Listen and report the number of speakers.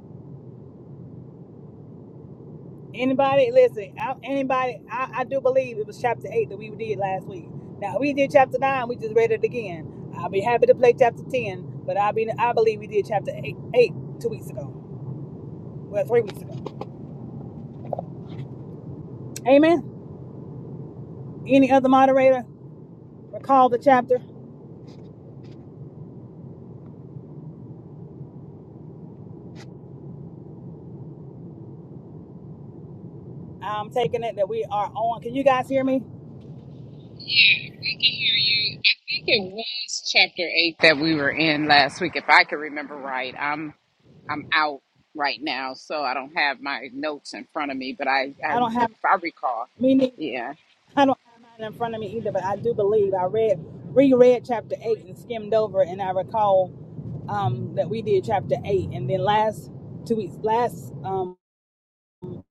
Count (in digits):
2